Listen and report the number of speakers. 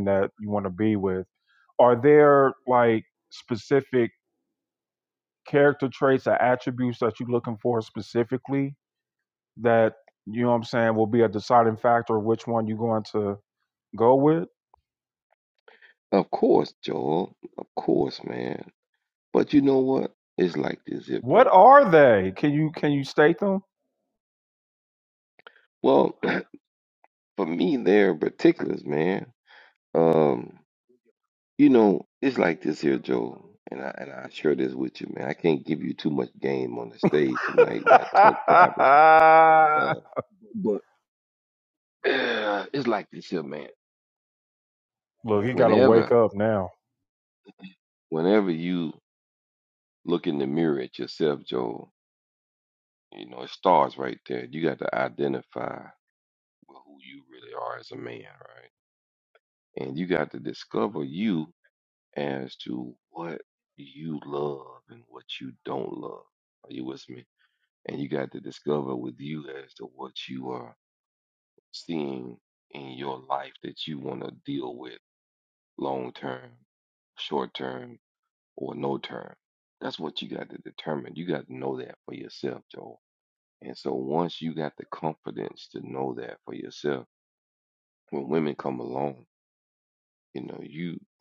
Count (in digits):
2